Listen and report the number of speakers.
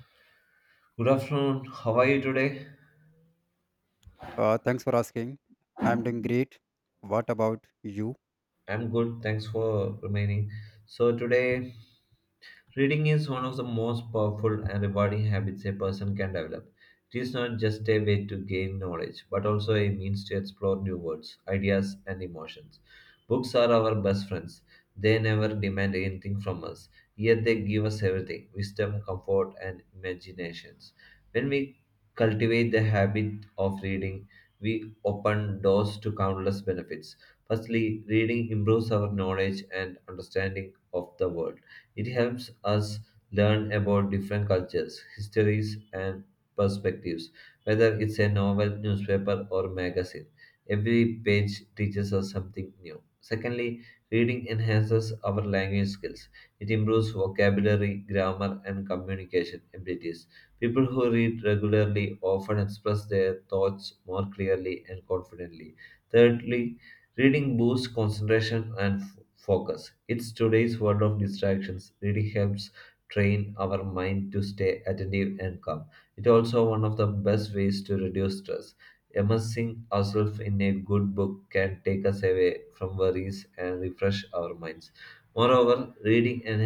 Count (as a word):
two